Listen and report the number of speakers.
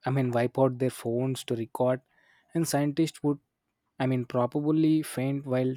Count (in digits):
1